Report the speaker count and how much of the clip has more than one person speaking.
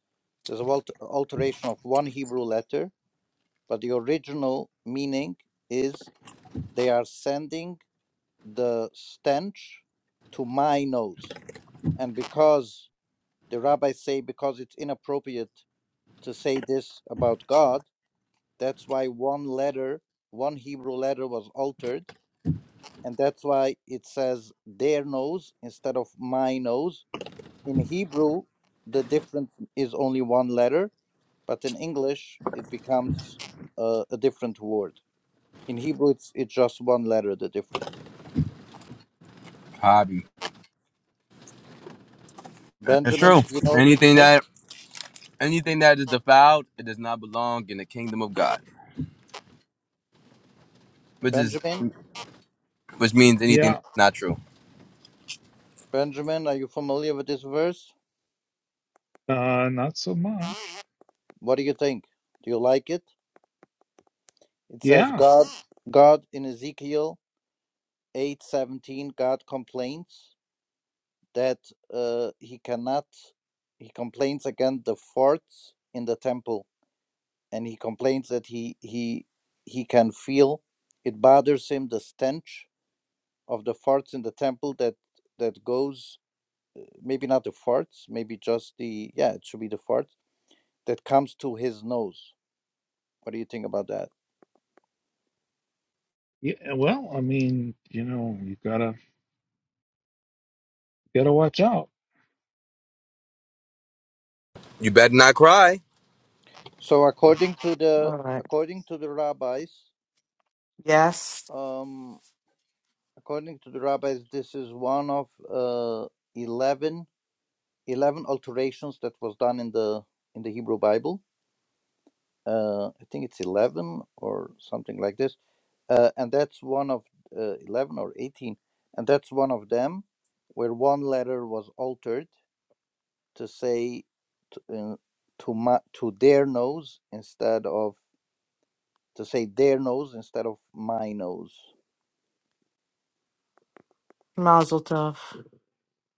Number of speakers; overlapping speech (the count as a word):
four, about 2%